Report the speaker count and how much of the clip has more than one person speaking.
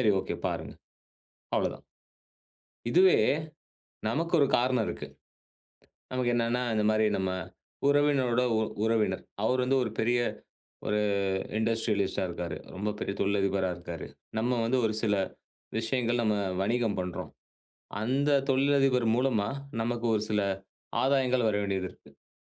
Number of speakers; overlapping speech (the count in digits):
1, no overlap